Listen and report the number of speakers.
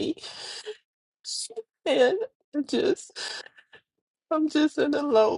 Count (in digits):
1